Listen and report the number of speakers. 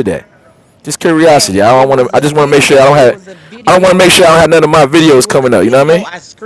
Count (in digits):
2